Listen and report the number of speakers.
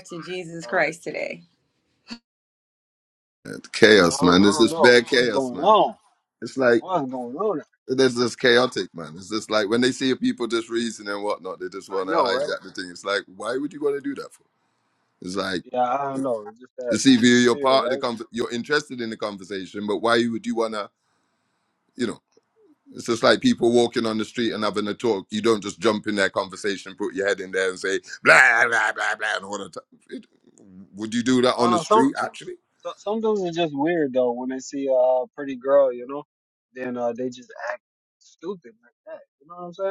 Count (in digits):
3